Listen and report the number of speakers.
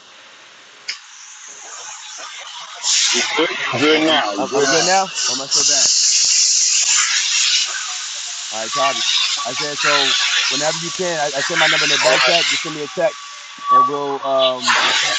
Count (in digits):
2